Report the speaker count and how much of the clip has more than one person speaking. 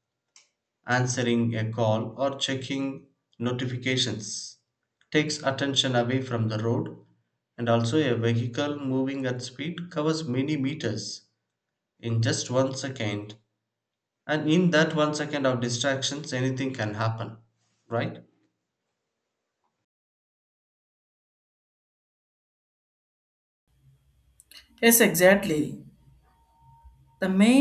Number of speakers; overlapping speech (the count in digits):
2, no overlap